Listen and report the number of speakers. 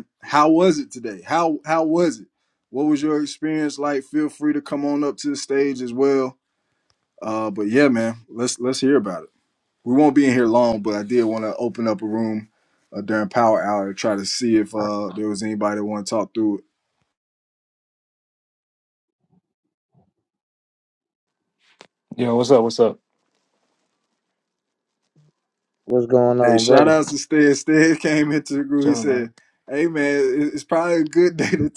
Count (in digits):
3